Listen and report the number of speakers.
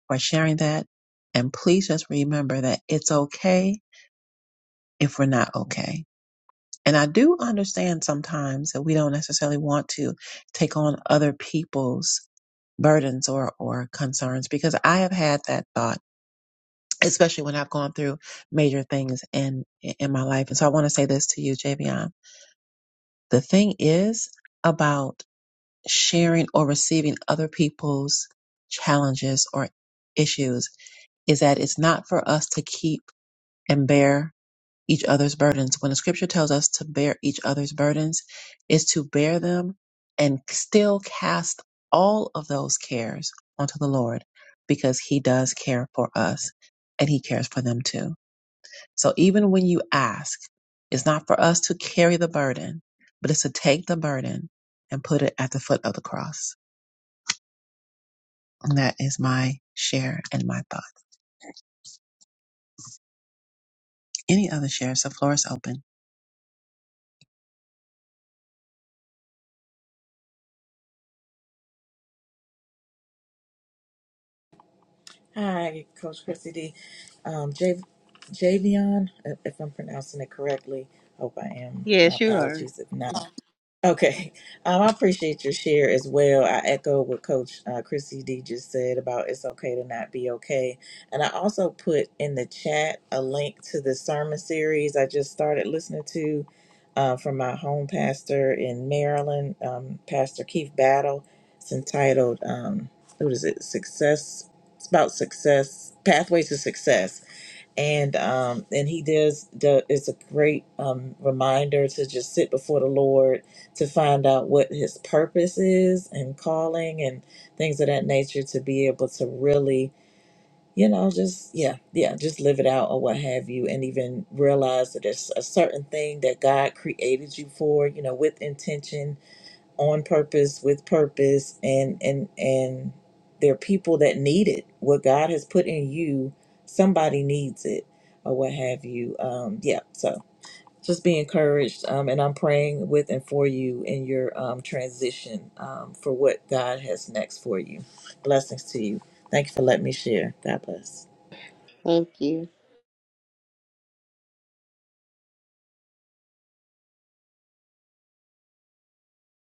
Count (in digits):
3